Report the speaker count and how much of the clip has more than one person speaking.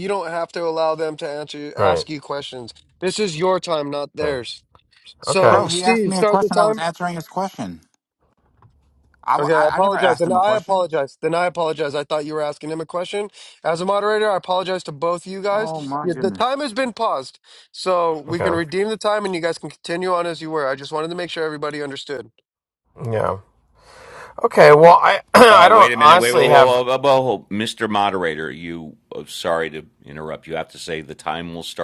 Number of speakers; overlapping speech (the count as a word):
four, about 17%